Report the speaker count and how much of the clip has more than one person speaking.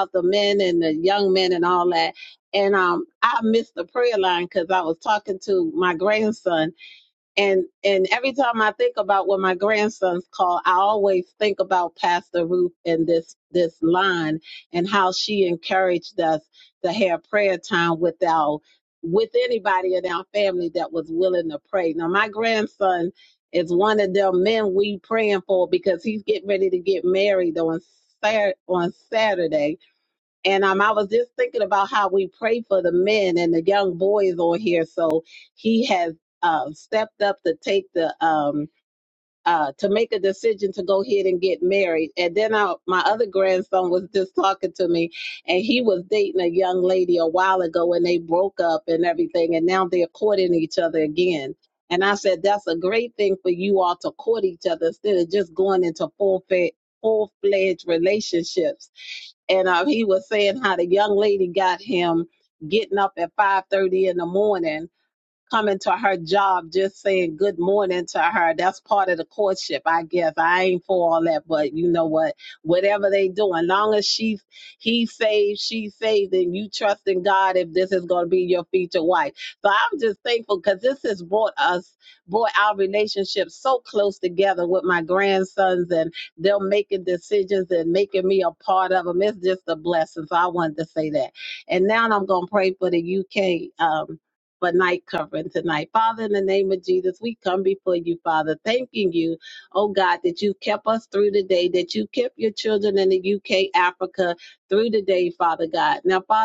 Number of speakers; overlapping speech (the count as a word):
one, no overlap